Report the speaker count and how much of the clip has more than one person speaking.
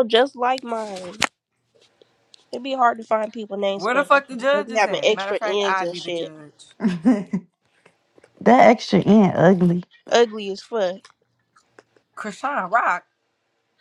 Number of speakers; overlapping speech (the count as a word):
three, about 15%